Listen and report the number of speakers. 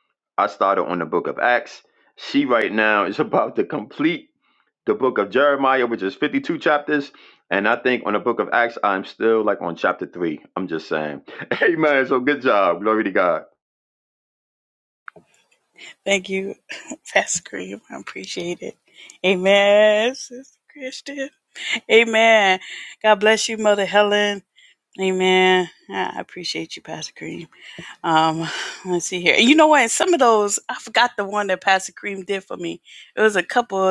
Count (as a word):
two